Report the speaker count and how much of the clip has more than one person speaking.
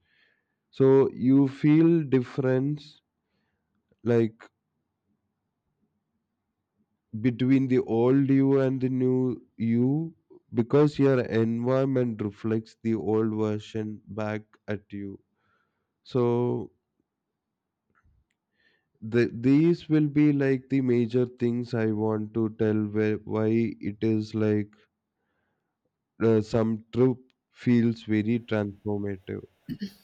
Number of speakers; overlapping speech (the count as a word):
one, no overlap